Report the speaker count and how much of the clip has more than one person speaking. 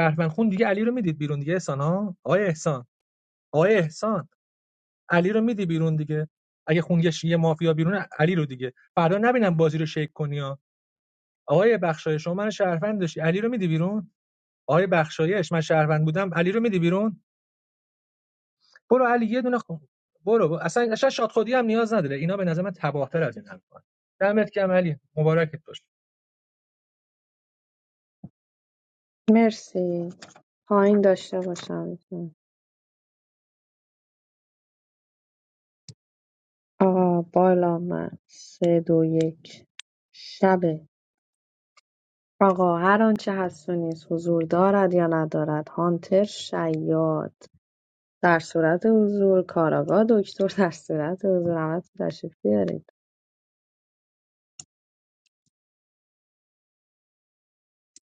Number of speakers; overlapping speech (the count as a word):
two, no overlap